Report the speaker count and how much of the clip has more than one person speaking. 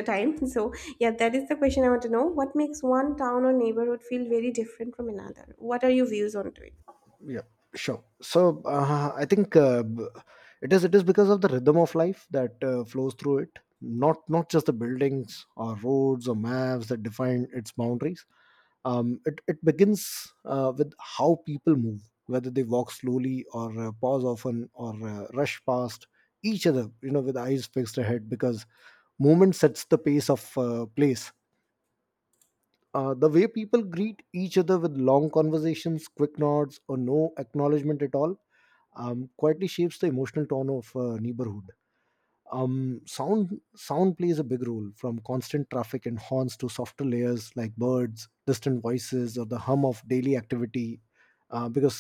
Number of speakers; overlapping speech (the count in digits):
2, no overlap